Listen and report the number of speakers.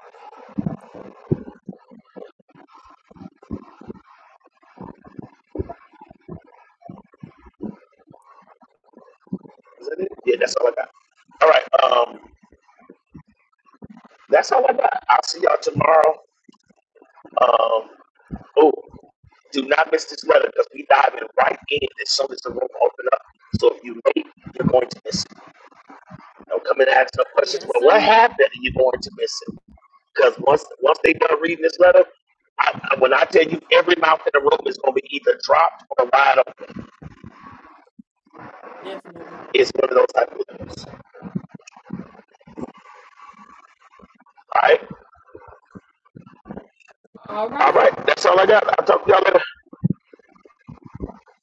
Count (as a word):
two